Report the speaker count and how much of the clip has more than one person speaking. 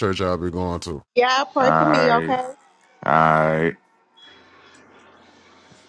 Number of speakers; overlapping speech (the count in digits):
3, about 13%